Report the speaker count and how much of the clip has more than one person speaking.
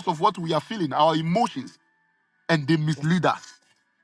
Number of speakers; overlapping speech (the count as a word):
one, no overlap